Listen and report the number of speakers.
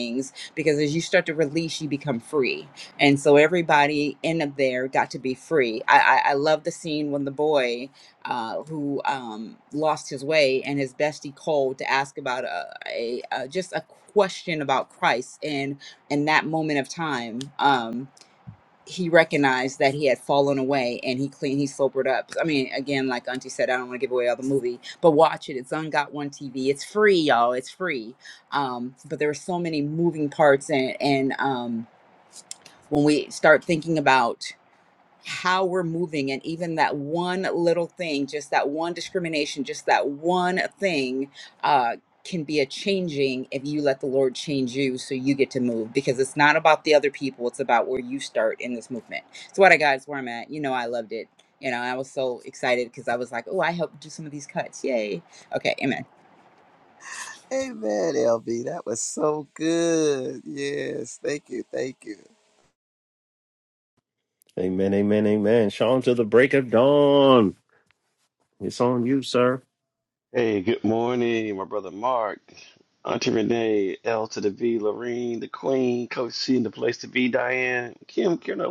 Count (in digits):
4